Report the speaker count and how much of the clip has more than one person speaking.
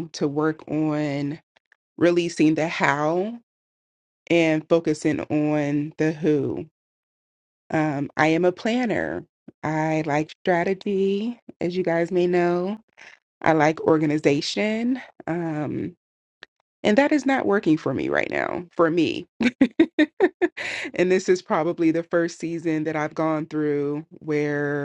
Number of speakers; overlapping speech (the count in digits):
1, no overlap